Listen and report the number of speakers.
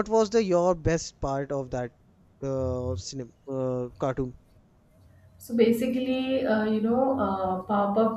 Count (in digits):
2